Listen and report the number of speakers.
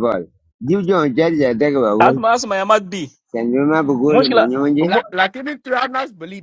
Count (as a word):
three